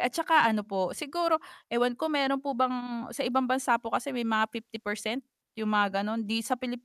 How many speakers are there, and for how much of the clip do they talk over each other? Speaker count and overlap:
one, no overlap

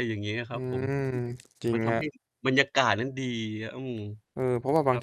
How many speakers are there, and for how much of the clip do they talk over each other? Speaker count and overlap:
two, about 22%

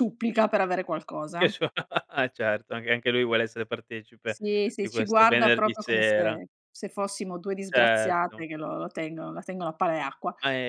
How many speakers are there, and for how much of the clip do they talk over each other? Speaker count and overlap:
two, about 22%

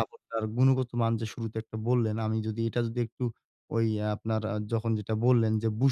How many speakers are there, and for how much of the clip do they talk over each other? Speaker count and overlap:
one, no overlap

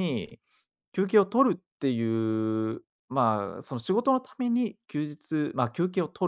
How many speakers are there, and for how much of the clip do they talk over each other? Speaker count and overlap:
one, no overlap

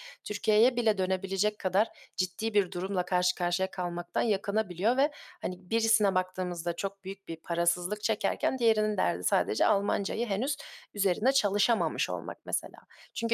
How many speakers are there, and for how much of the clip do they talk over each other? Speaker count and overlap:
one, no overlap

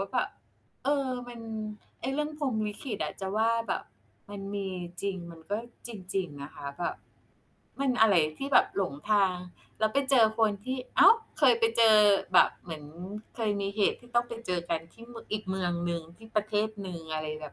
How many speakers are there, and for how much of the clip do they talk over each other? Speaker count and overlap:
one, no overlap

